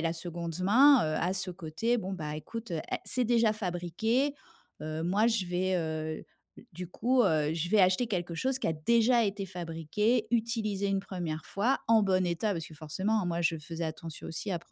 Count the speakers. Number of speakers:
1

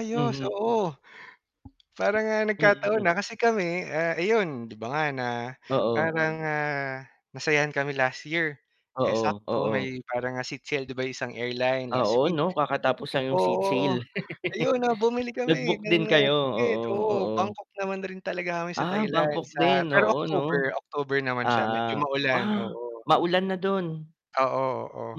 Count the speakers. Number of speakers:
2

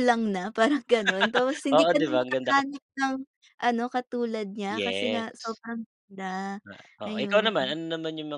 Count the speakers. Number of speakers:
2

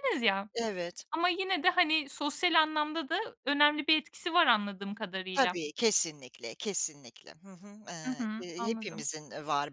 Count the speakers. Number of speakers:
2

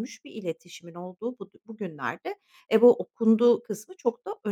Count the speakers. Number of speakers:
1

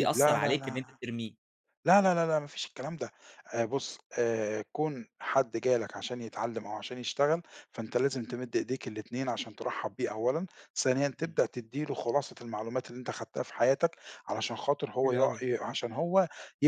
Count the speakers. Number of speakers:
2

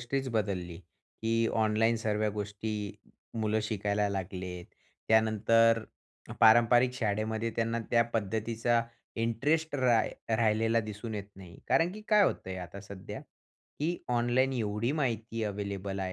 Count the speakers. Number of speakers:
1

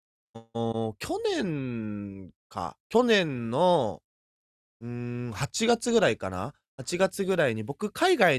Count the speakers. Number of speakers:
1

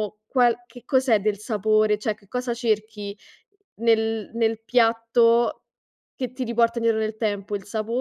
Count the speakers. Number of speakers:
1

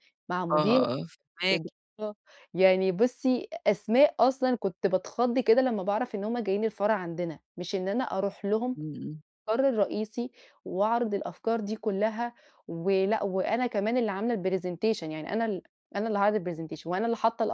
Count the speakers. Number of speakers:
2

